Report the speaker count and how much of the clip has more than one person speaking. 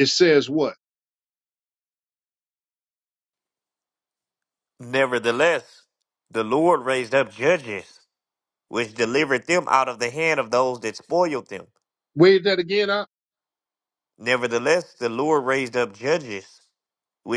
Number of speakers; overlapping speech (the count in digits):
2, no overlap